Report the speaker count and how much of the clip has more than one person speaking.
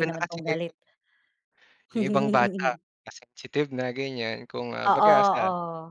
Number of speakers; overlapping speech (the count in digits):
2, about 22%